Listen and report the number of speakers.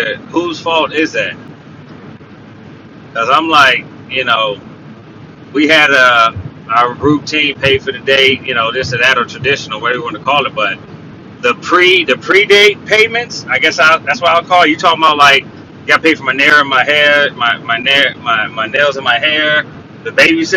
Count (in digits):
1